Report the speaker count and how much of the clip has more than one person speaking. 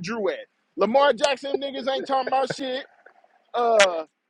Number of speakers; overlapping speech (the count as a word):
one, no overlap